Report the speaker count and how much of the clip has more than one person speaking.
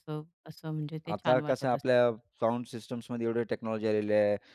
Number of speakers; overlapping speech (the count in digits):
2, about 16%